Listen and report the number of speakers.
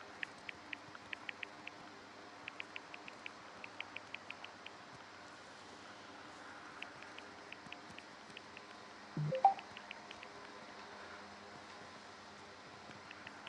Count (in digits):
0